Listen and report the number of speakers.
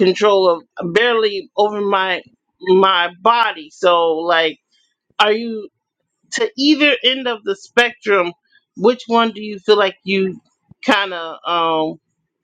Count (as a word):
one